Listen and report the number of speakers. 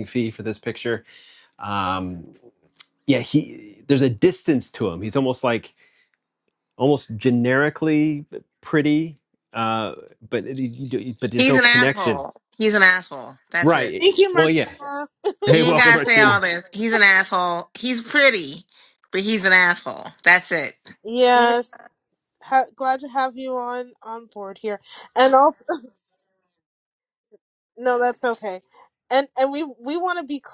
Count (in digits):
3